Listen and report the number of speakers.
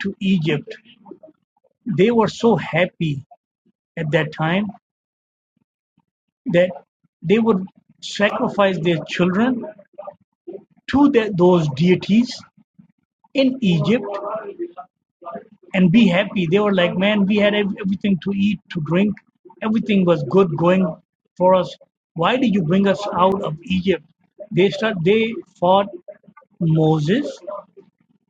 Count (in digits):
1